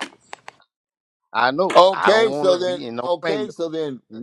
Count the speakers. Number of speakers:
2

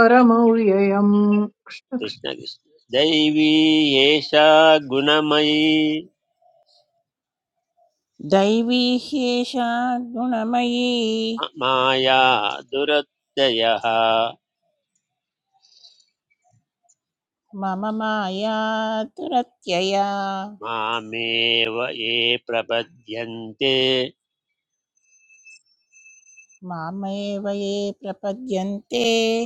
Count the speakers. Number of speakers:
3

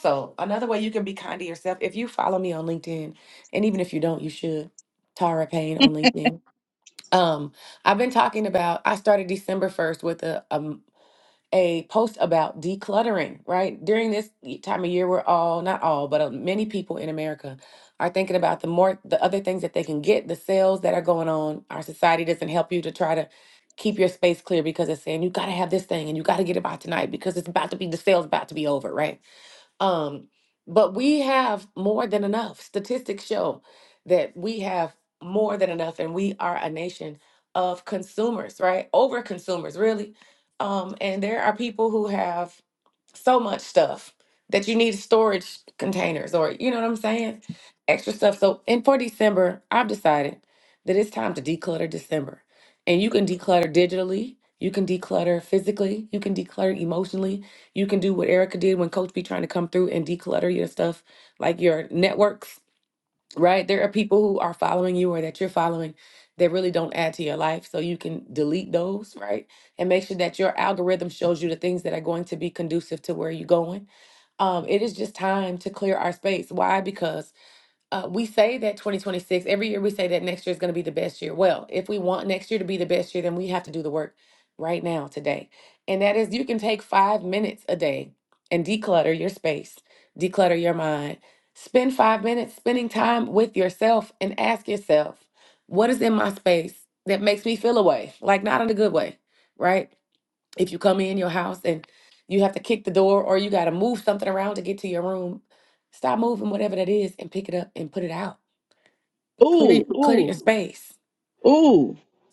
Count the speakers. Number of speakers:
2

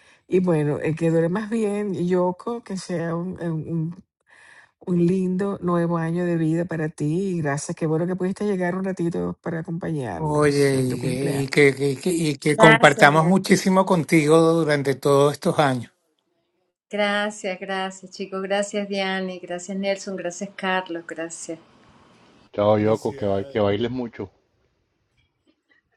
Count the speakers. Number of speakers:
4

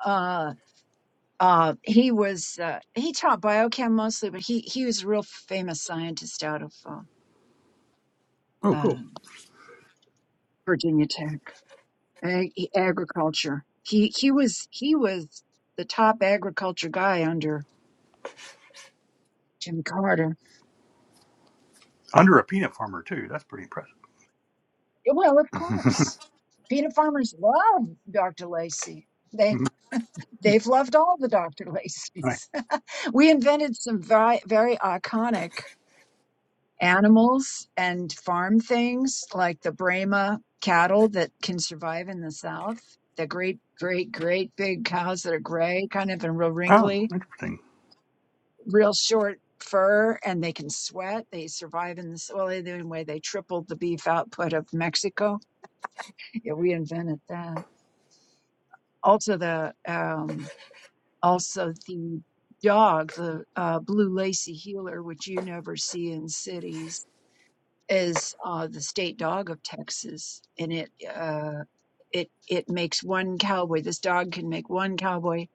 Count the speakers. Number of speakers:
2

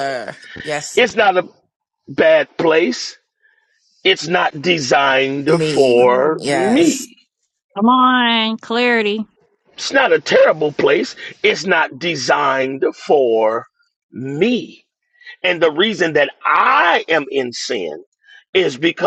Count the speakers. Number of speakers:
3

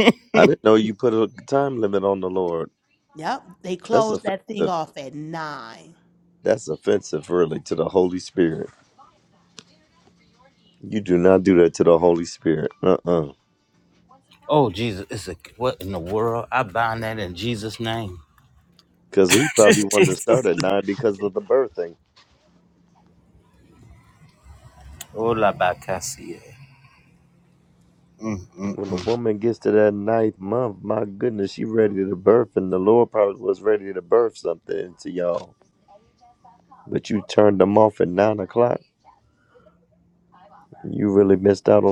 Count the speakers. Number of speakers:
3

